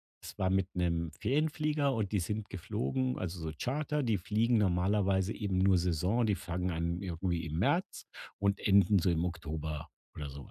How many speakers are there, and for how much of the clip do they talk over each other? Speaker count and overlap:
1, no overlap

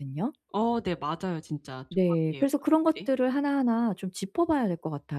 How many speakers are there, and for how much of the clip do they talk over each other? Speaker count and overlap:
2, about 13%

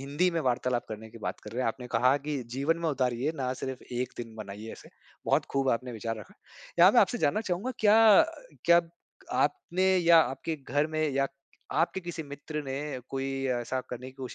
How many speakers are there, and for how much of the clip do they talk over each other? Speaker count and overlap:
1, no overlap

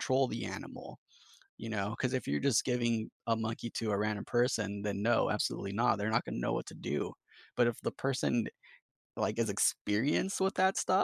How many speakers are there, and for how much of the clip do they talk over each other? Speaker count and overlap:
1, no overlap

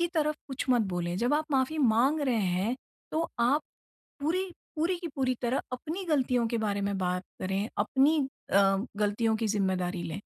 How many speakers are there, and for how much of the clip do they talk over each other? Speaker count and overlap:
1, no overlap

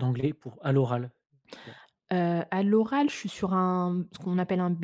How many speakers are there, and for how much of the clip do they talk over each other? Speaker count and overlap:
2, no overlap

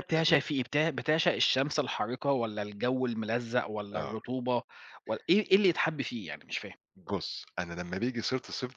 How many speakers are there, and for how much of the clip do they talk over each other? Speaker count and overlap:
2, about 8%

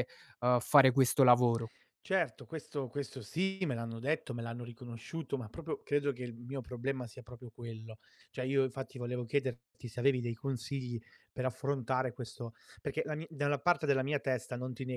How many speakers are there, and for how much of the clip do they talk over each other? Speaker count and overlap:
2, no overlap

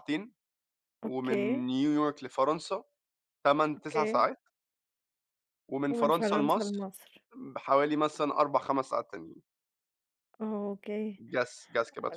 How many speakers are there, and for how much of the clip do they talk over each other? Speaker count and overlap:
2, about 14%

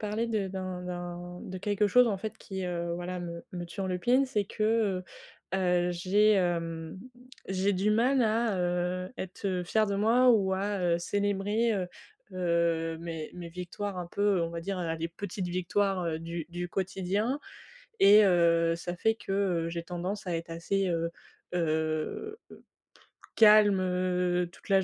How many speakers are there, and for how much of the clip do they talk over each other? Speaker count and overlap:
1, no overlap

